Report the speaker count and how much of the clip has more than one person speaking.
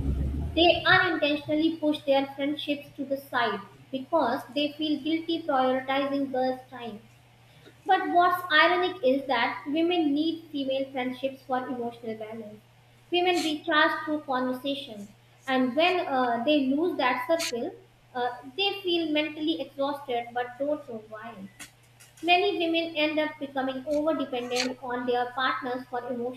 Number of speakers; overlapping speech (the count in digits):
1, no overlap